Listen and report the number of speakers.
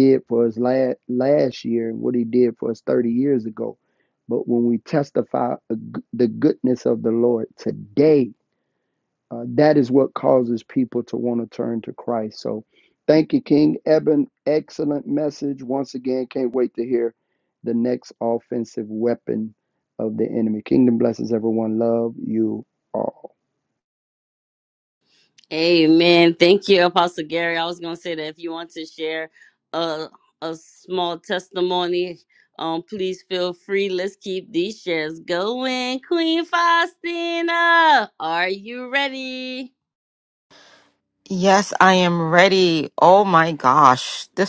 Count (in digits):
3